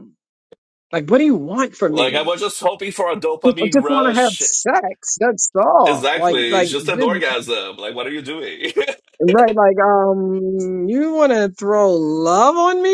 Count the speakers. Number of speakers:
two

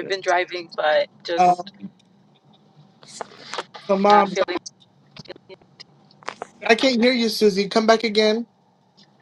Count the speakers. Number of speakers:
two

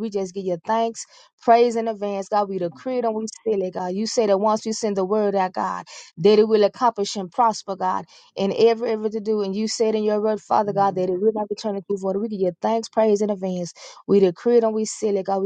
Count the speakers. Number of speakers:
one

